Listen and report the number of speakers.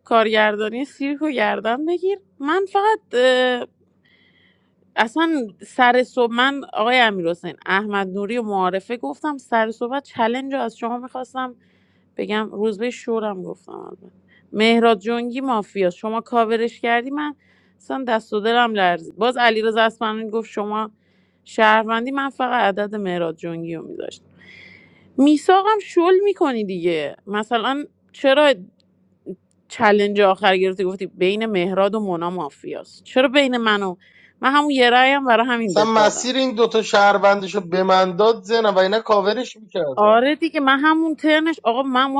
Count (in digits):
2